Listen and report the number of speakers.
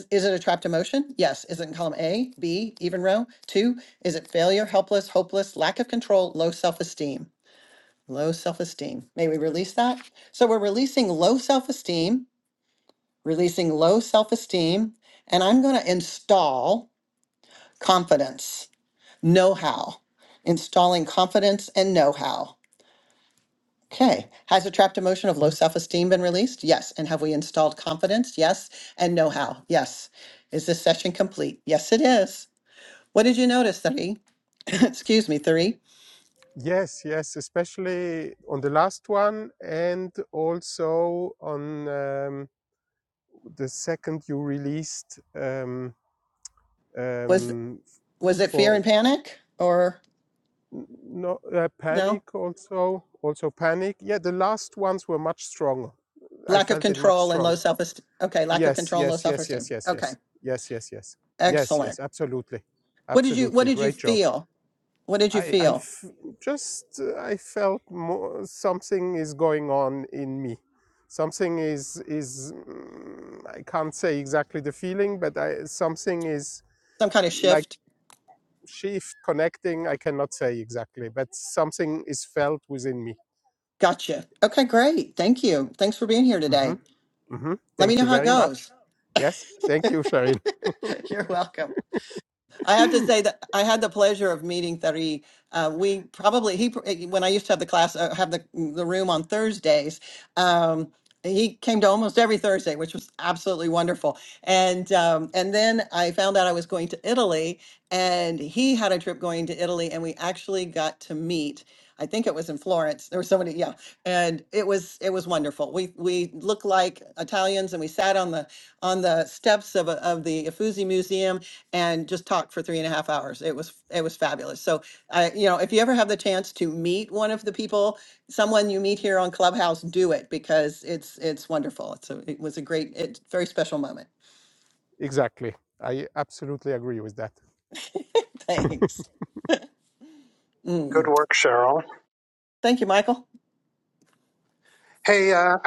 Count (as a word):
three